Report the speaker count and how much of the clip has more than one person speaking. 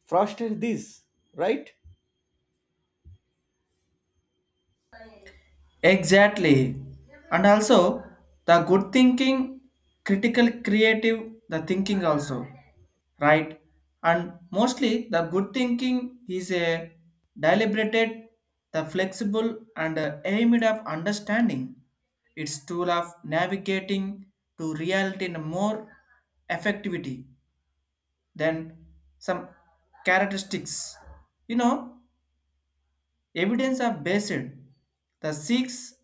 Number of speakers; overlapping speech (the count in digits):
2, no overlap